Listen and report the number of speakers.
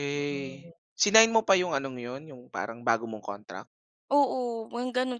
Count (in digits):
2